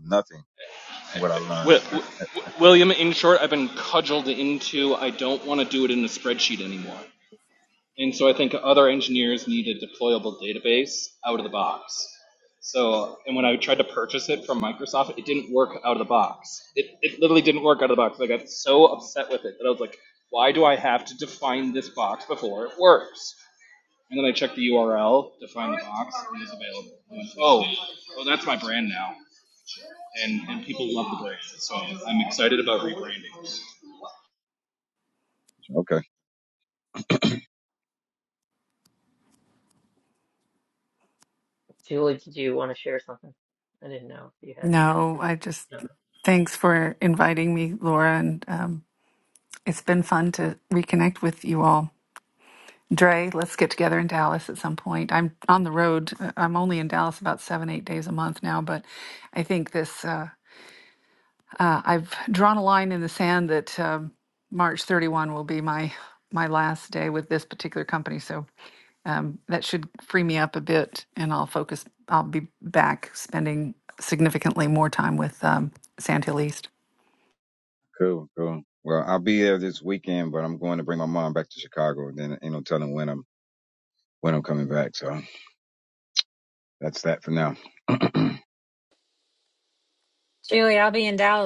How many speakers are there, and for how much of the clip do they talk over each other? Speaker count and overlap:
five, under 1%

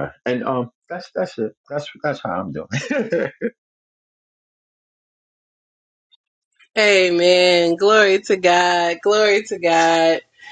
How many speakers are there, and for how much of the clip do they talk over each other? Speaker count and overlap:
two, no overlap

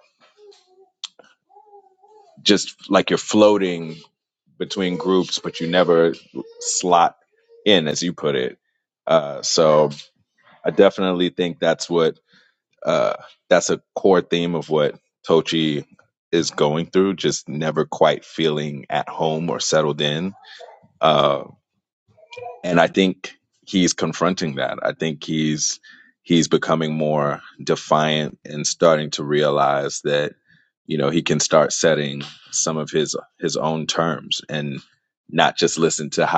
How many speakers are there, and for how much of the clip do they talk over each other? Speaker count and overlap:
one, no overlap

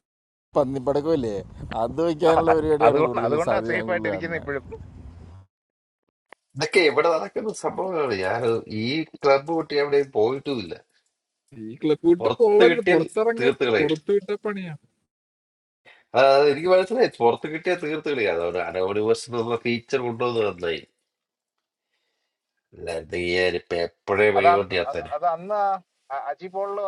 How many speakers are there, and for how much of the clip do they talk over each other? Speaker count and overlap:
four, about 16%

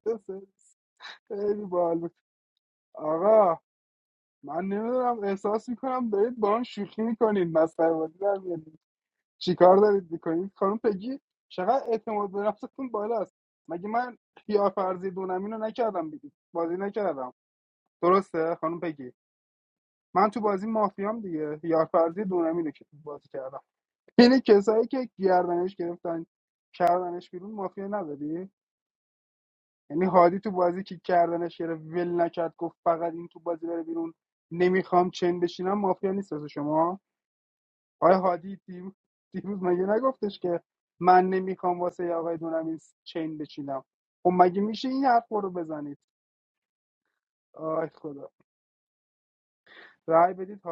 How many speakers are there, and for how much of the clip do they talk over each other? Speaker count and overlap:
one, no overlap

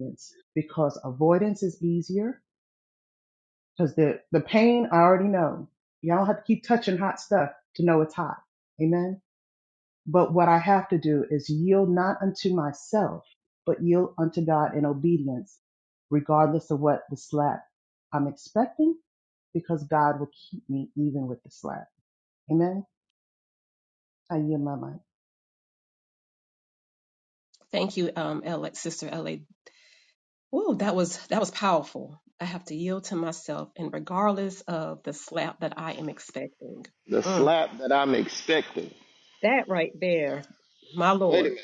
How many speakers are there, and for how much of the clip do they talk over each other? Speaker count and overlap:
three, about 1%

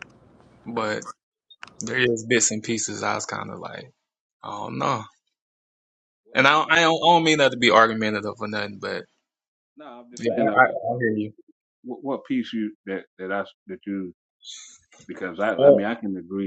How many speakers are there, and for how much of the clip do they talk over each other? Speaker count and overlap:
two, about 7%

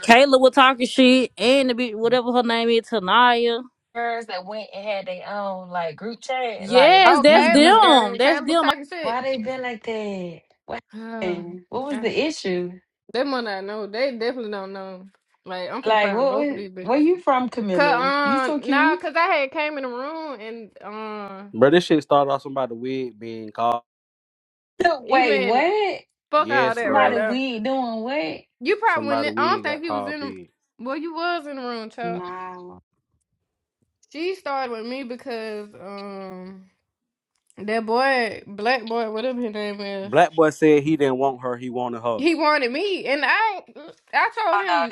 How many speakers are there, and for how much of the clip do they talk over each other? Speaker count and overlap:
four, about 18%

